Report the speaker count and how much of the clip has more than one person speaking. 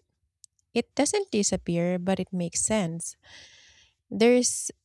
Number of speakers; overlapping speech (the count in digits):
1, no overlap